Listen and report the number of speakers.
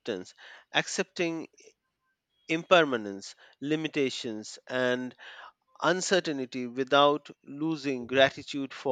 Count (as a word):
one